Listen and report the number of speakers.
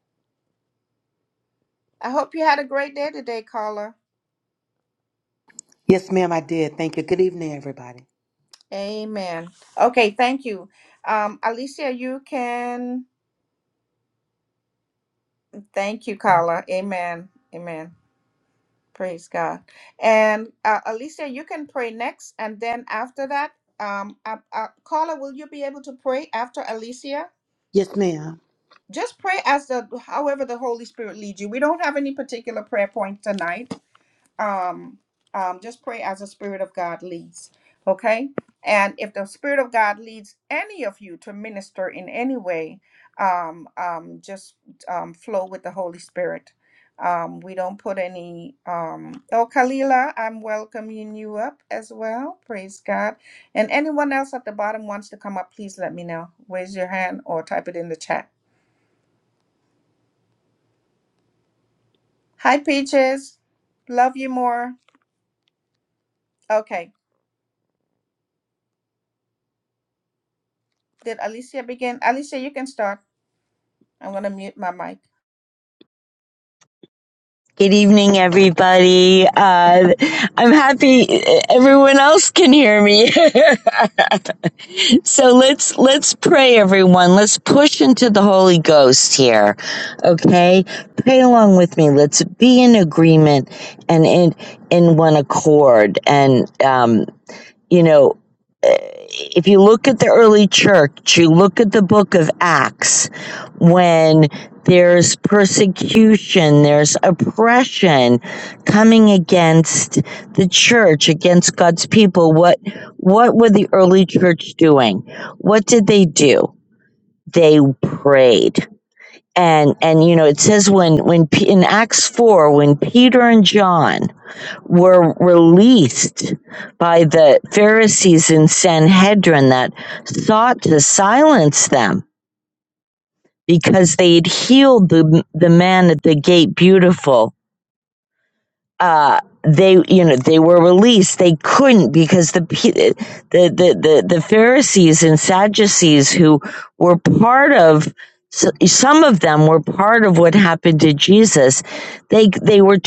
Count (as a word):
three